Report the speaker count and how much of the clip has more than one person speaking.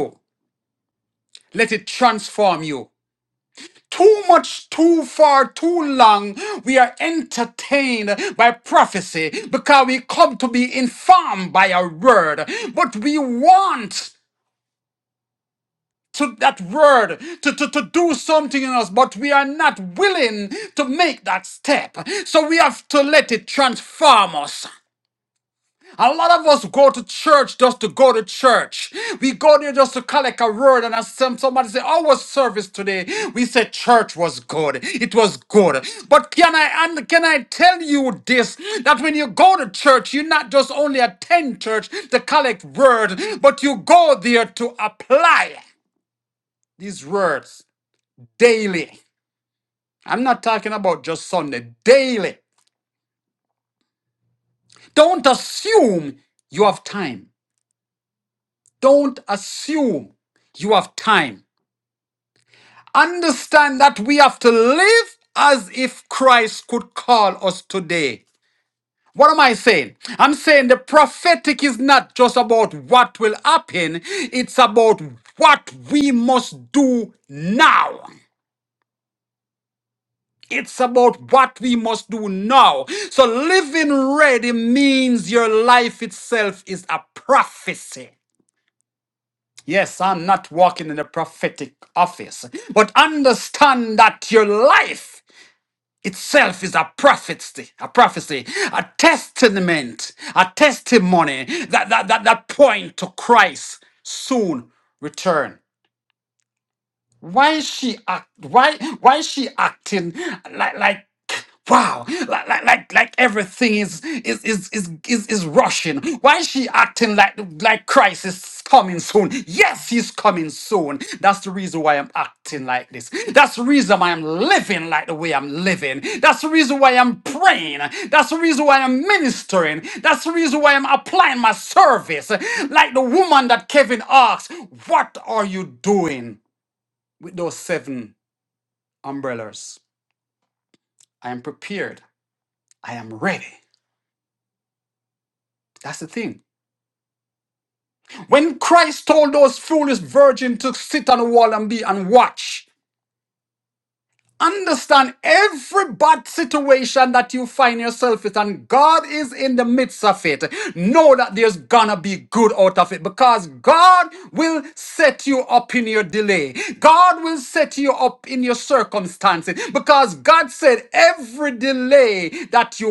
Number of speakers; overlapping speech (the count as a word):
one, no overlap